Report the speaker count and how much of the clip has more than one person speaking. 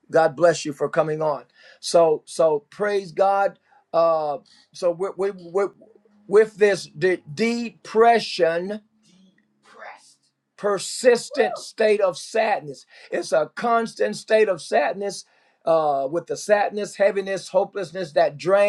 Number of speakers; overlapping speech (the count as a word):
one, no overlap